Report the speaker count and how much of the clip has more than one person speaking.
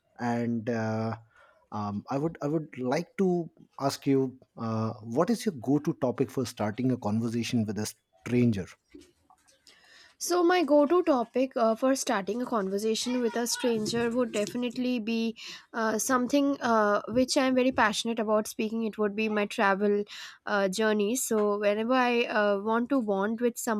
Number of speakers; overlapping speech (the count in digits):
2, no overlap